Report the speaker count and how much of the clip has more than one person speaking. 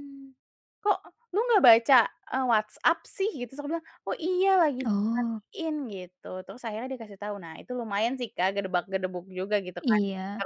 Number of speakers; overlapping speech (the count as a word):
two, about 6%